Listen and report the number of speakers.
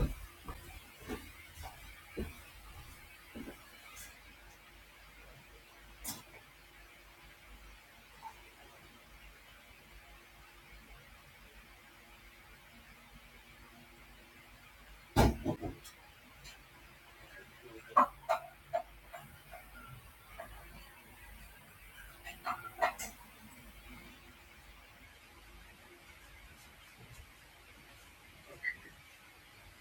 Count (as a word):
zero